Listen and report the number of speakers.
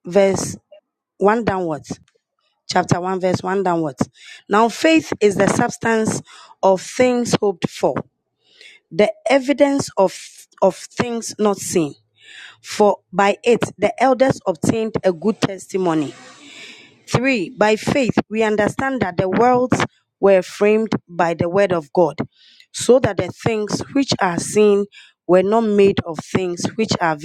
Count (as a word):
one